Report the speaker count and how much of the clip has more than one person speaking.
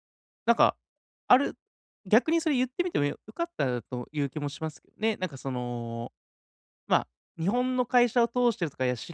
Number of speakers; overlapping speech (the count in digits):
1, no overlap